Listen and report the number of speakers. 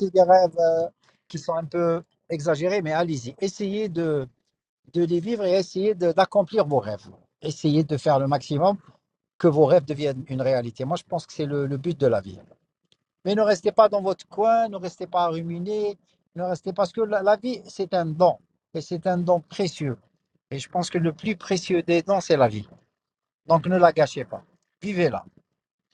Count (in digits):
1